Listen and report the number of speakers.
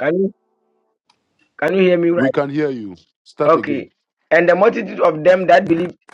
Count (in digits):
2